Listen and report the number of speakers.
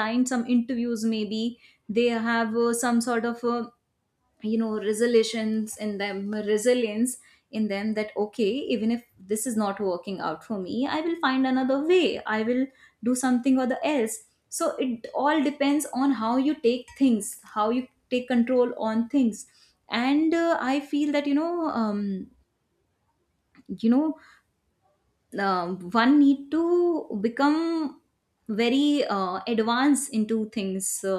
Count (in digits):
1